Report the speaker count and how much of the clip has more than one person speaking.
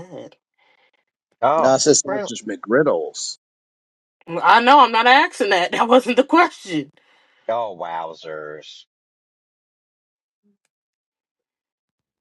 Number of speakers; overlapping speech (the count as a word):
three, about 6%